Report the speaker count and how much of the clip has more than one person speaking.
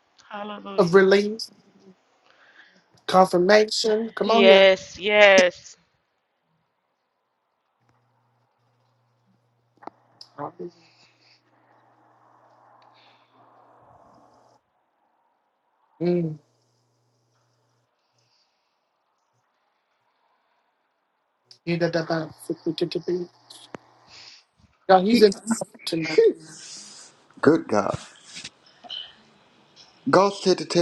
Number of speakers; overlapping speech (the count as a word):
three, about 2%